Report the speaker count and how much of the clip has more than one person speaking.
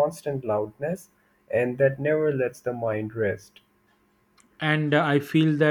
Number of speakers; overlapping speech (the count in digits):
2, no overlap